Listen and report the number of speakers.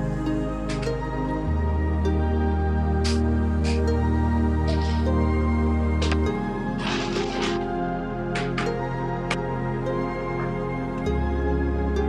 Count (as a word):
zero